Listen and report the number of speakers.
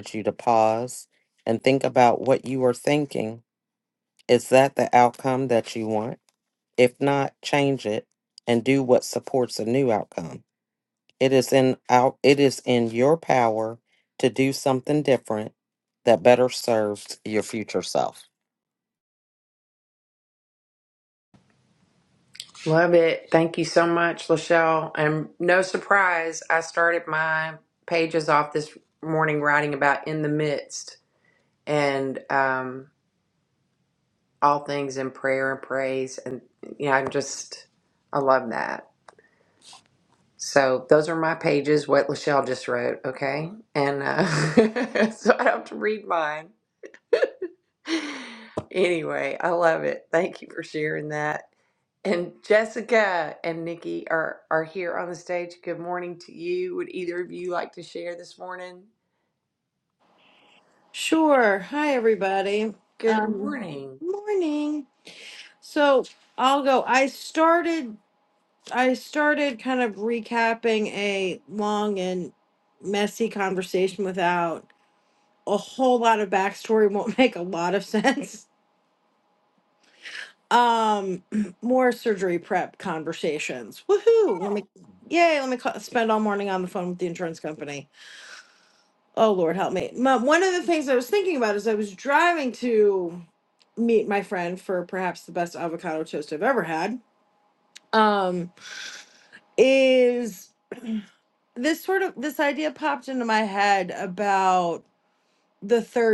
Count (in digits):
3